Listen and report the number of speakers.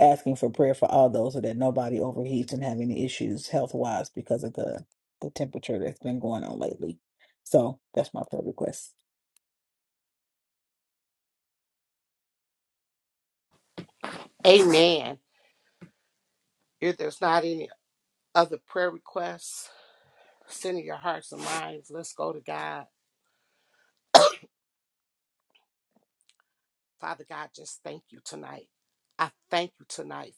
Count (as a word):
two